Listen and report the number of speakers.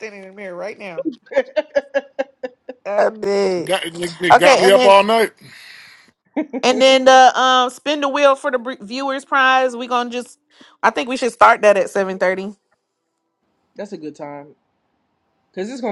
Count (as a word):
three